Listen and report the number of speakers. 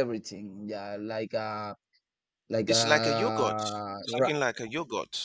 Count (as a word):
two